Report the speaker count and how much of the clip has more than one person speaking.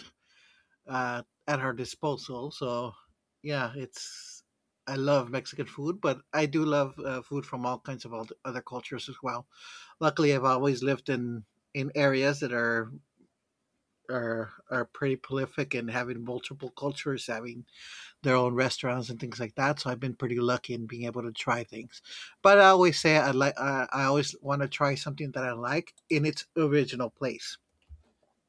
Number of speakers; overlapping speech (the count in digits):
1, no overlap